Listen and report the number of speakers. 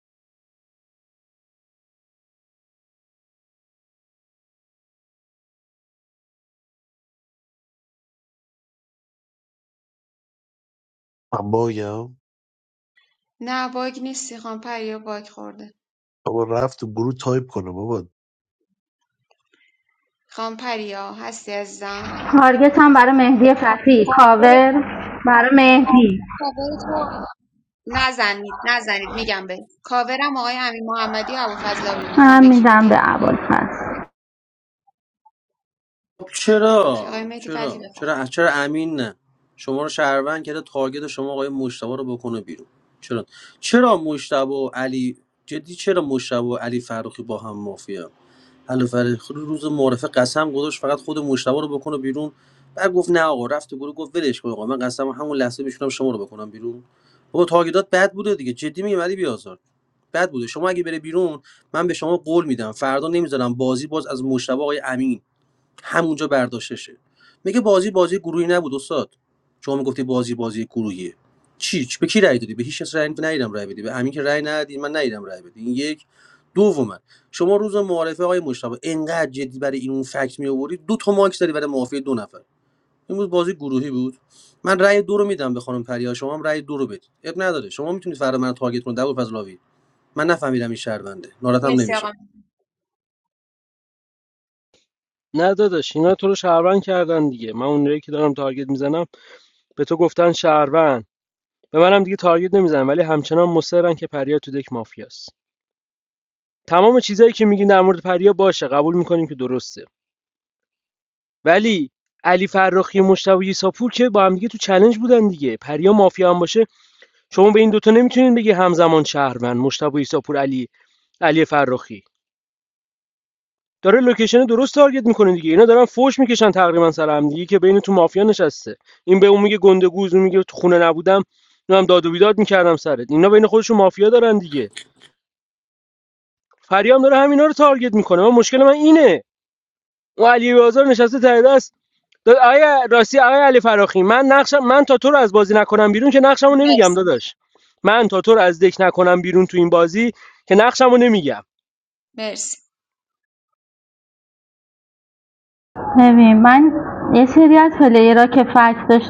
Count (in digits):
5